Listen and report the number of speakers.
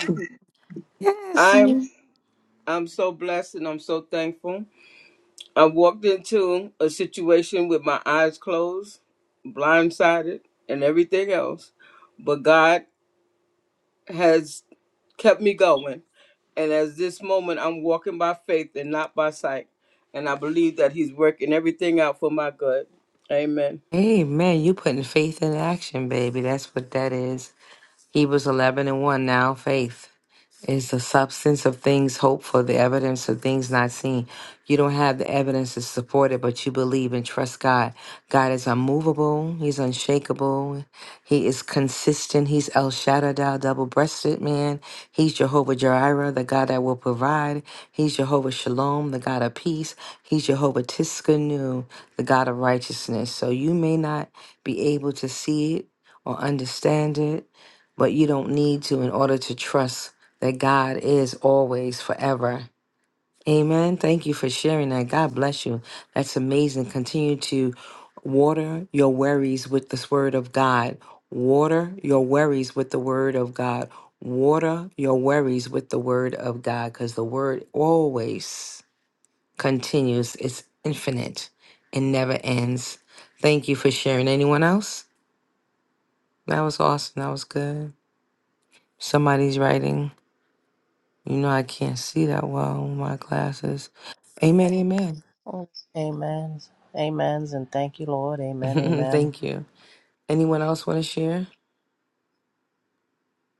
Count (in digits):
3